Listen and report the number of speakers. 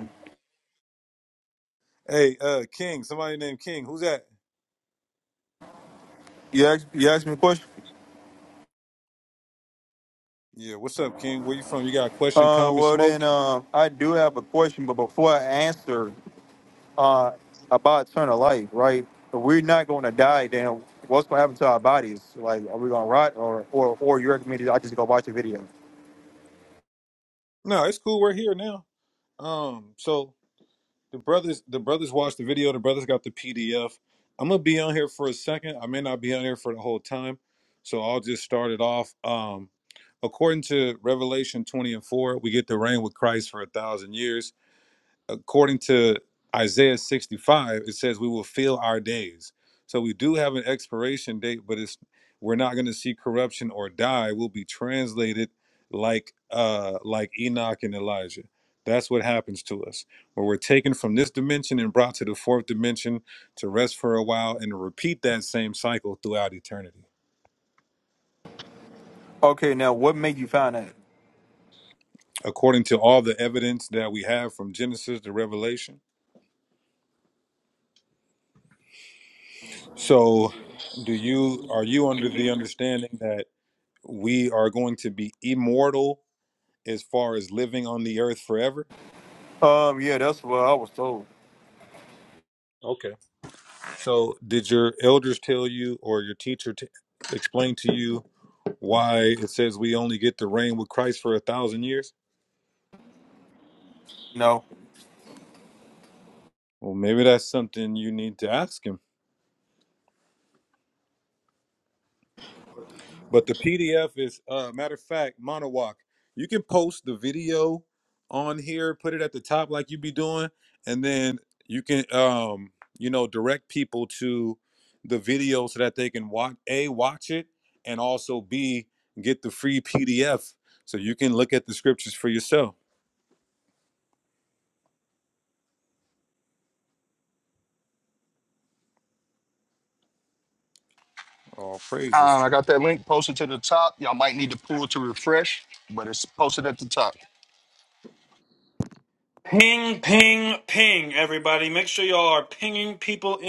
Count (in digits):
4